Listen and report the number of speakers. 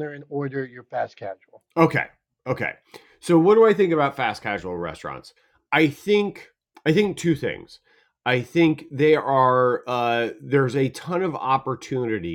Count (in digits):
2